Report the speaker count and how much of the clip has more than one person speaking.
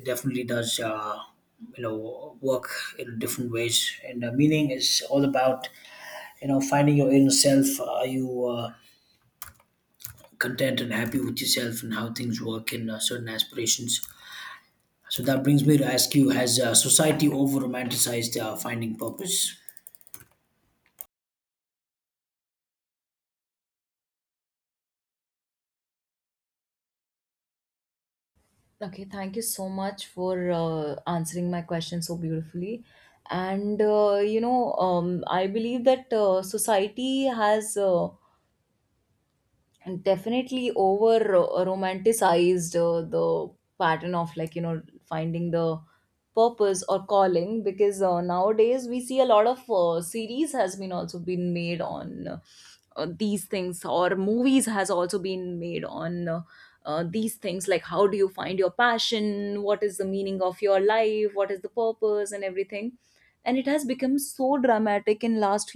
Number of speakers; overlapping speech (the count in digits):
2, no overlap